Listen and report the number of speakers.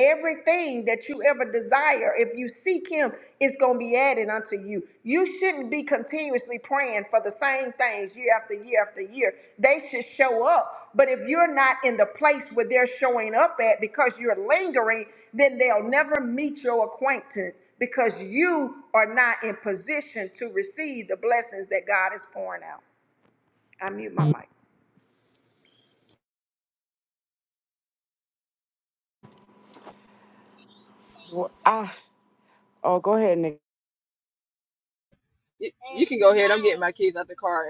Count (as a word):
three